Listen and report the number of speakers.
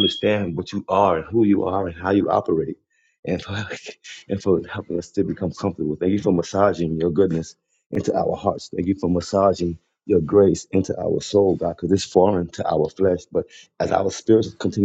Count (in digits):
1